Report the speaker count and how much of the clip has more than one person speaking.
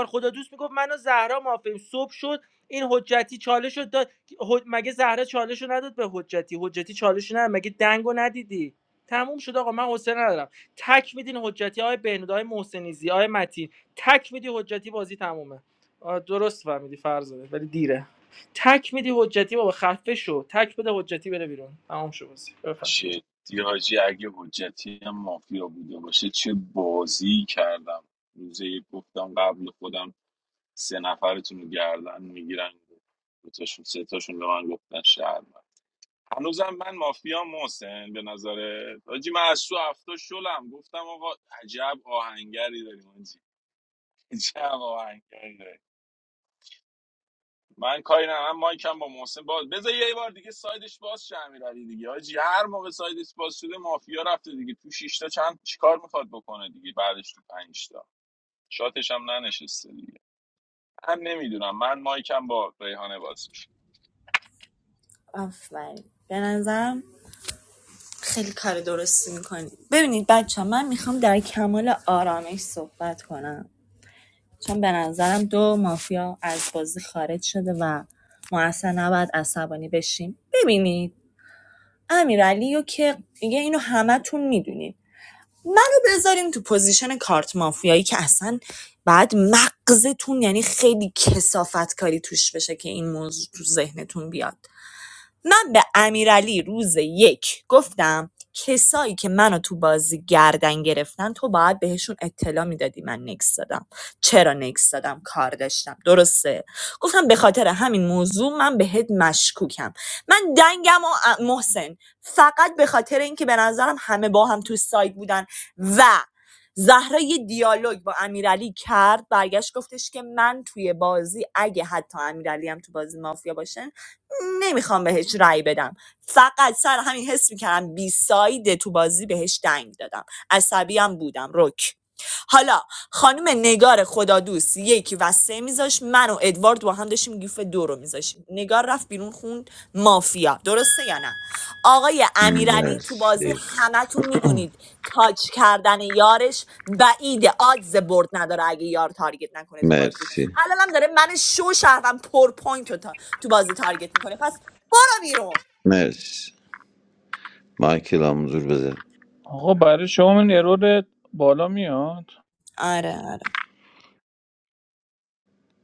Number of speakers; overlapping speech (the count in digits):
5, about 1%